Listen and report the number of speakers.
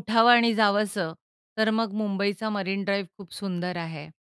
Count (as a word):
one